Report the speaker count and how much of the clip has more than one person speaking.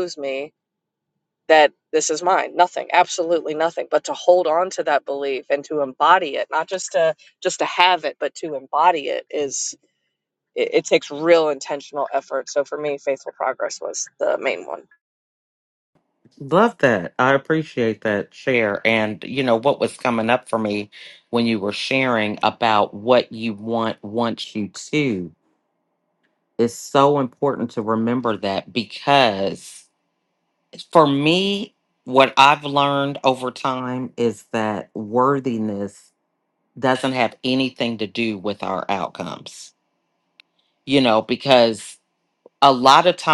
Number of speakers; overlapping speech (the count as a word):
two, no overlap